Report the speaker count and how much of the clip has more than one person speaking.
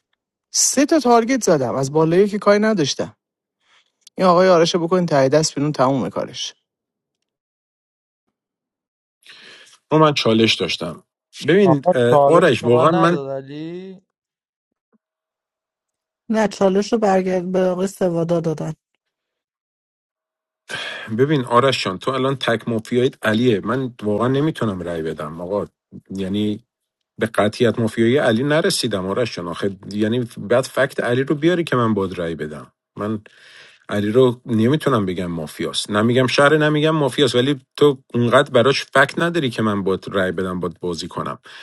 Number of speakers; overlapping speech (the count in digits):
4, about 4%